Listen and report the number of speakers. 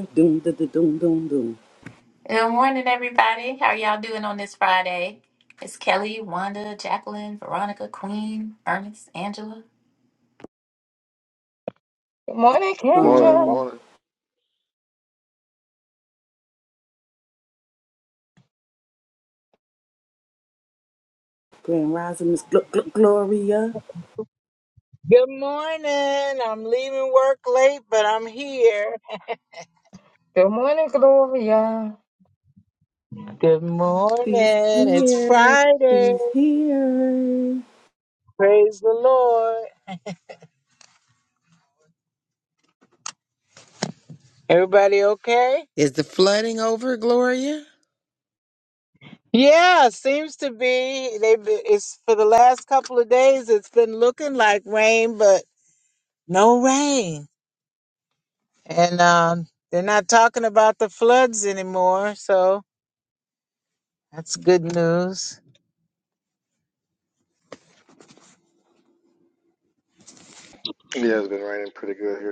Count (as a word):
six